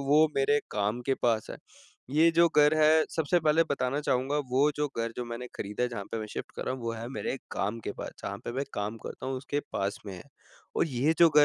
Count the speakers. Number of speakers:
one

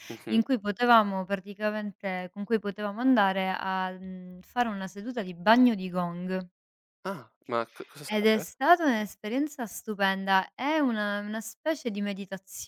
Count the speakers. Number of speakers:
two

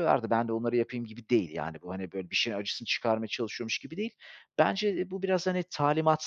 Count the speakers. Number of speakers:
one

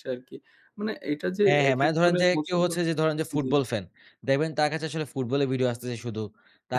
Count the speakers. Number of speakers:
two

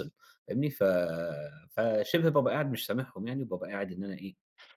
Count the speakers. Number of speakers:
one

